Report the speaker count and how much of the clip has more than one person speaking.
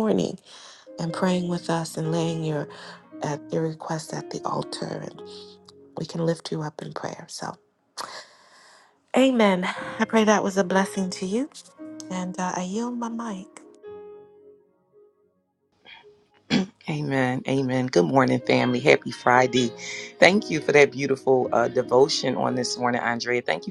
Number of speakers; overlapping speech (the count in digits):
2, no overlap